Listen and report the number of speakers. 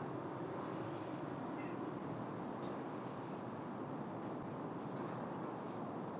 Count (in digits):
0